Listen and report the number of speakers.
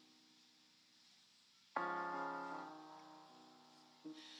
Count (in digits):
0